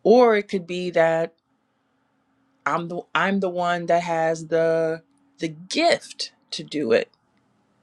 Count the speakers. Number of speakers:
one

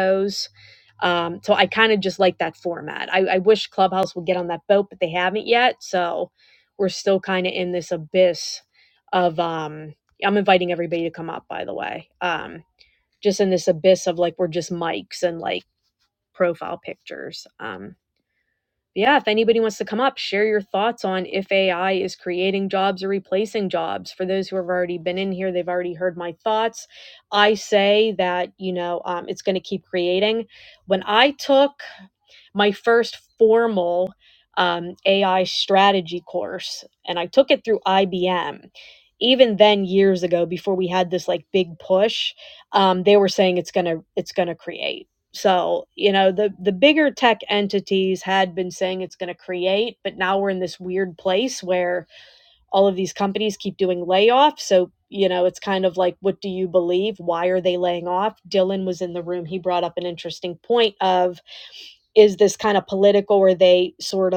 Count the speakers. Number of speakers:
one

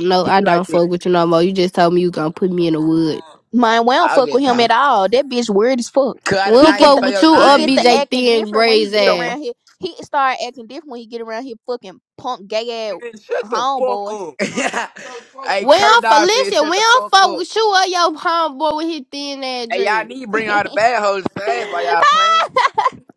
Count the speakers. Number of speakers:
three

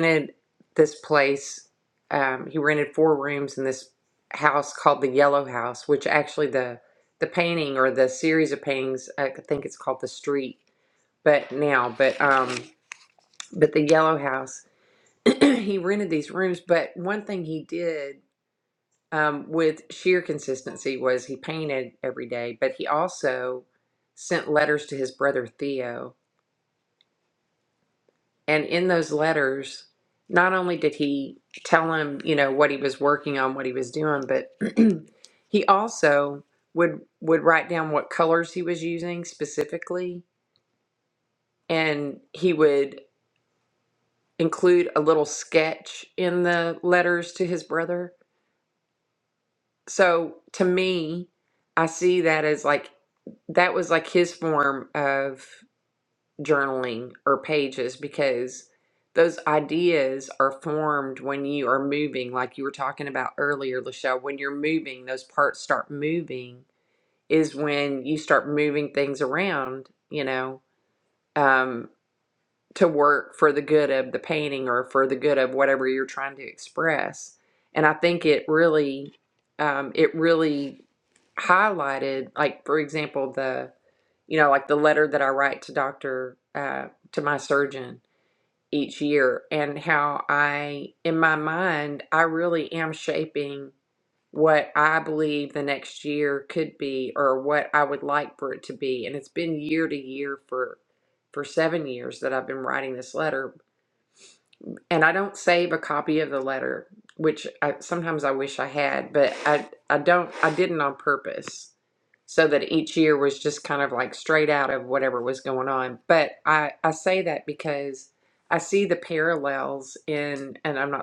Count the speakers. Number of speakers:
one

